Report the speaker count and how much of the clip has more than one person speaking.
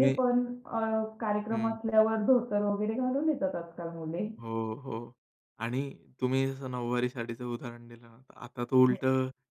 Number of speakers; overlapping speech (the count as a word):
two, about 6%